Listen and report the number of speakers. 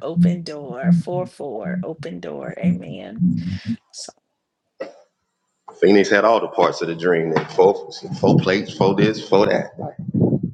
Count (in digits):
2